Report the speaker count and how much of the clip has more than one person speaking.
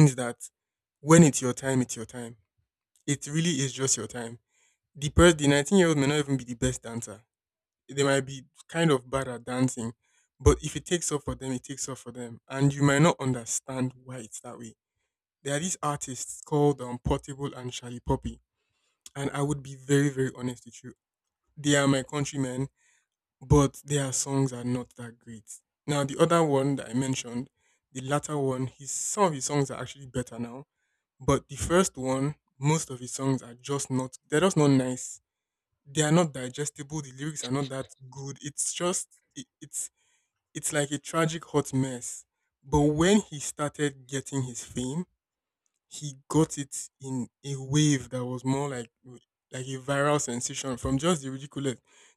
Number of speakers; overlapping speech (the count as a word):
one, no overlap